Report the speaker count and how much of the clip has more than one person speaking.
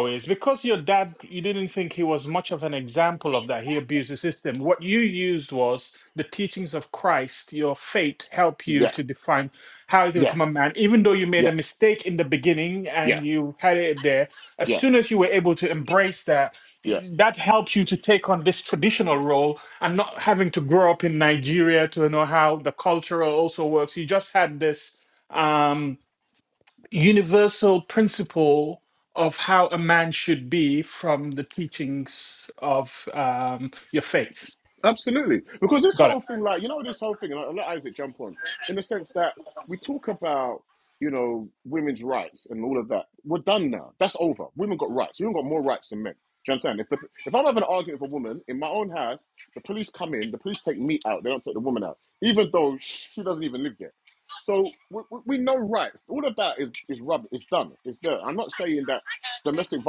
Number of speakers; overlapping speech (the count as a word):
two, about 2%